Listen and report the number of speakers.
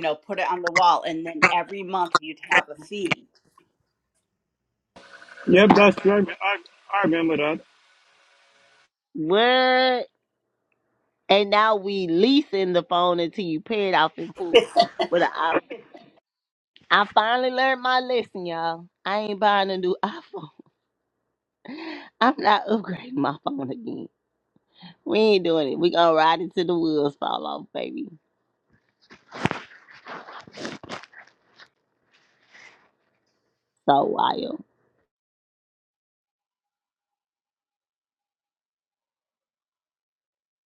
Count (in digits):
3